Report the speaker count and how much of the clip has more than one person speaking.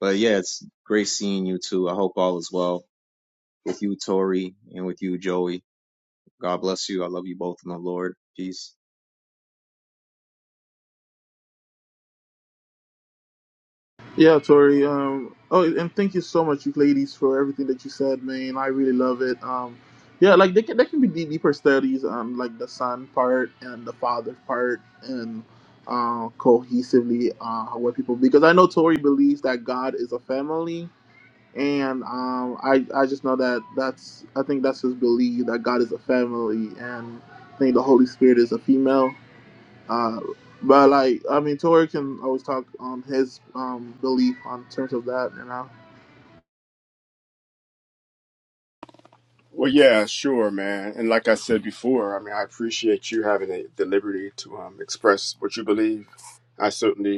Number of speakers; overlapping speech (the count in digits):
3, no overlap